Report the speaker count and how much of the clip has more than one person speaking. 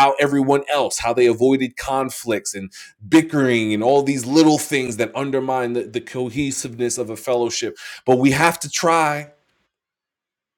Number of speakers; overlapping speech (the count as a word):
one, no overlap